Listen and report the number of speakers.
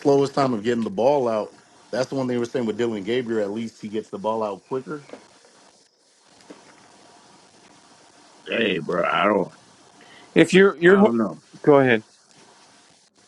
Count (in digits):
3